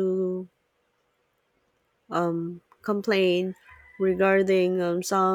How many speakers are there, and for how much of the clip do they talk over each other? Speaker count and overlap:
1, no overlap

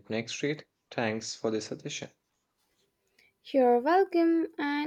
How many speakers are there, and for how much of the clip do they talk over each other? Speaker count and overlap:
2, no overlap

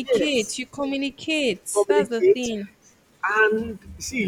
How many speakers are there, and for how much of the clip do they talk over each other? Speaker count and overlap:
2, about 27%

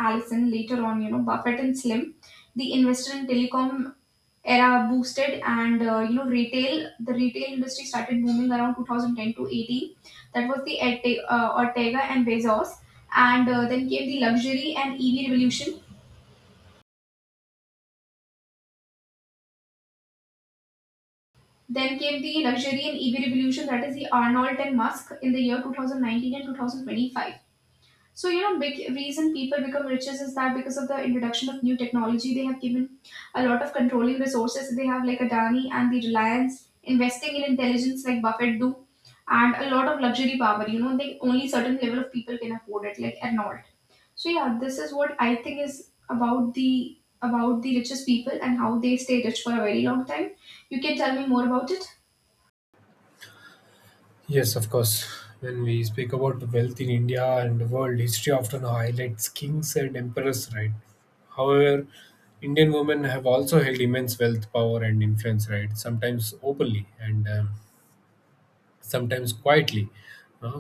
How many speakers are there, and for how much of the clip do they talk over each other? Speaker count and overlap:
2, no overlap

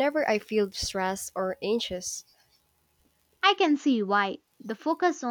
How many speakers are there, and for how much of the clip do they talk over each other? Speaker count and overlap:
2, no overlap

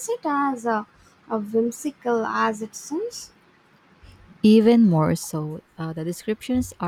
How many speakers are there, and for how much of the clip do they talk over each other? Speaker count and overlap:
2, no overlap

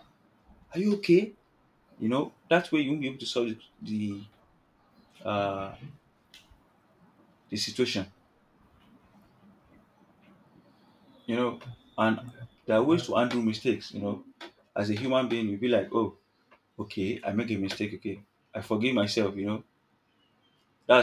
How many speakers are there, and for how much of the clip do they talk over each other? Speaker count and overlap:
1, no overlap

